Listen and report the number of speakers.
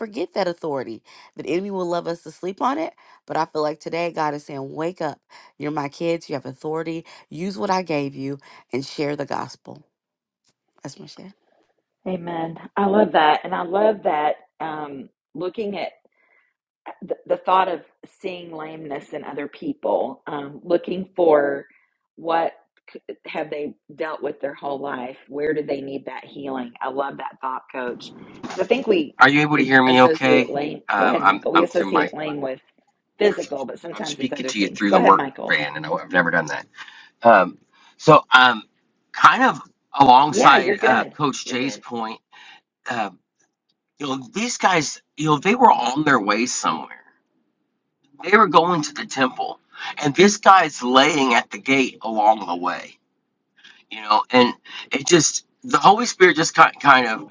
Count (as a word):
three